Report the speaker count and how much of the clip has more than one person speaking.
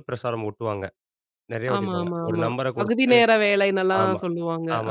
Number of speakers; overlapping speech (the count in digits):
2, about 40%